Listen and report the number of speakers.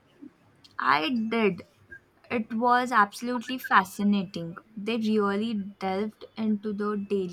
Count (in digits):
1